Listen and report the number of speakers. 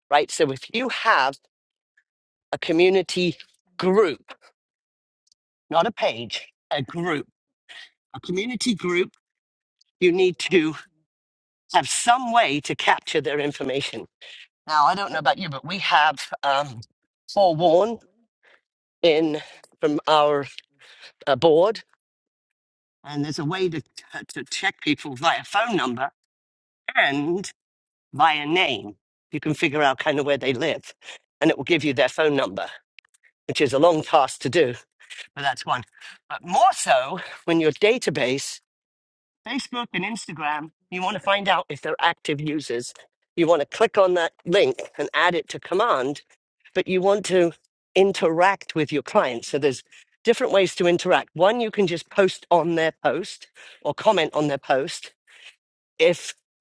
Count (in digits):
1